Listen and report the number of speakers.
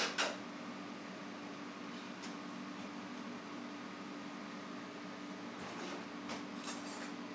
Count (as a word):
zero